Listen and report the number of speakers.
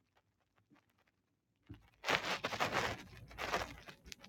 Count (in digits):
0